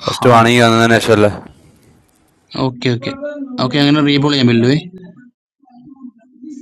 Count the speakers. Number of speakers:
2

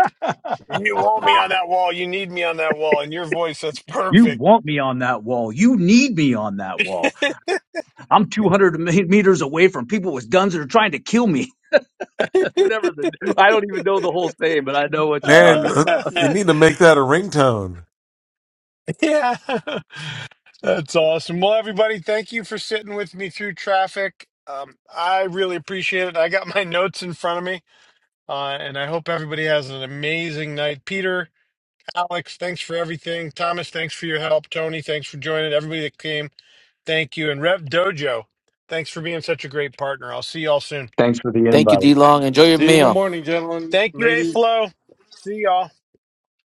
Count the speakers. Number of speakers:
5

